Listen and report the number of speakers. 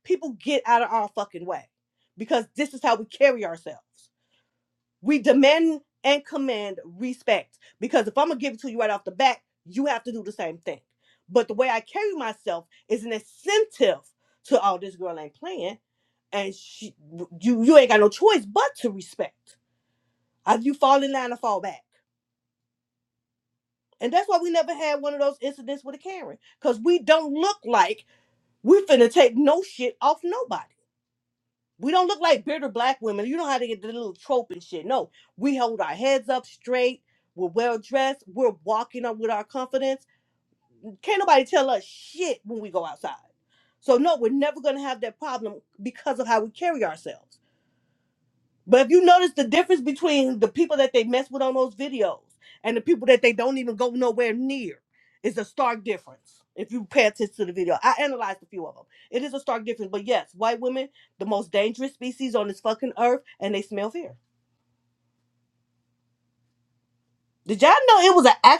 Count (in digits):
1